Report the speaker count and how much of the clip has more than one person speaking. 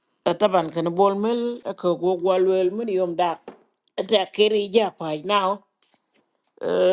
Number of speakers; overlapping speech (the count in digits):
1, no overlap